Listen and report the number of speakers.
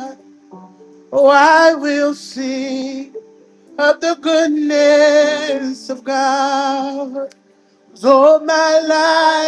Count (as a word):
one